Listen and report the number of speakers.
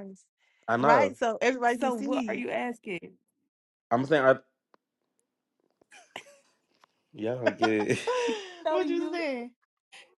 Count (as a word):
three